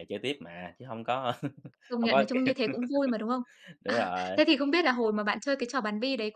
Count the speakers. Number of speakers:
two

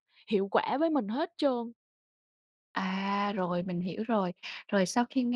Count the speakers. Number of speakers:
two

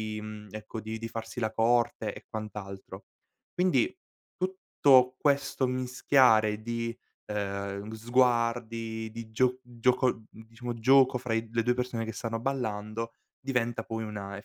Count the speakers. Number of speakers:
one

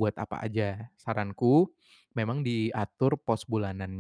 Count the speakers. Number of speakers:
one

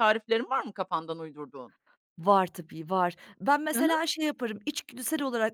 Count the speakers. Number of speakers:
two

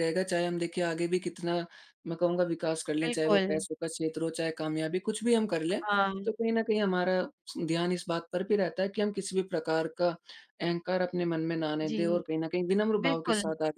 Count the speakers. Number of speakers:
two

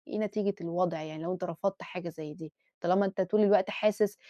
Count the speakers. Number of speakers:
one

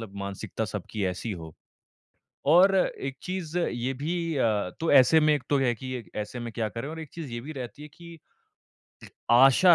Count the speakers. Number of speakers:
one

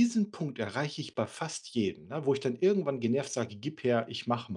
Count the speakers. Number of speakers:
one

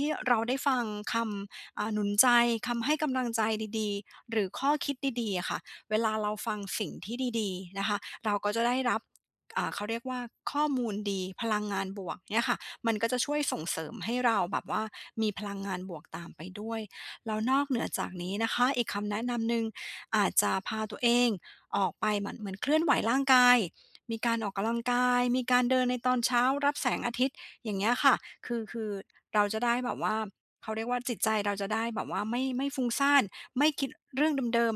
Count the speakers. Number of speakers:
one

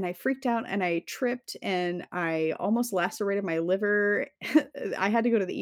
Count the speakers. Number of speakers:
one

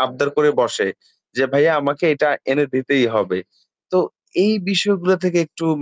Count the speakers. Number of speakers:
one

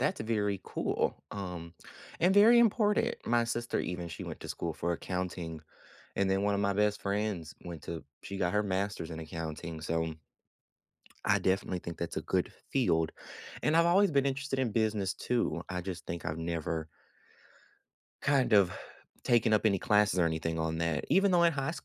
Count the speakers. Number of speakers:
one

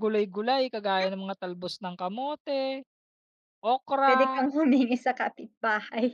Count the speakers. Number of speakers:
two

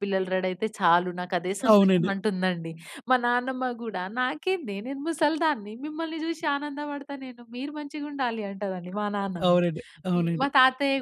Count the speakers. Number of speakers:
two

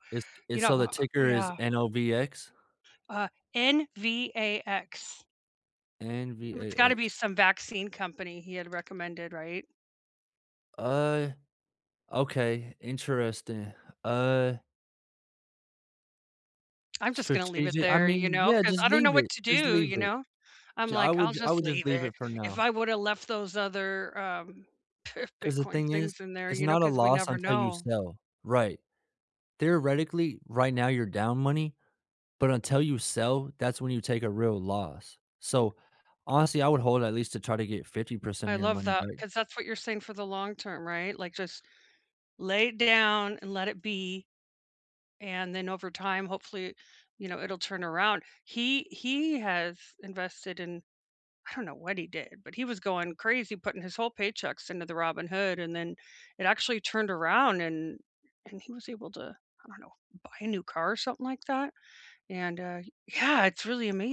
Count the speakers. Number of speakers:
two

